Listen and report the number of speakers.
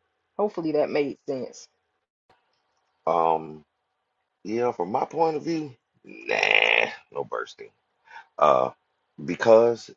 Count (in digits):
2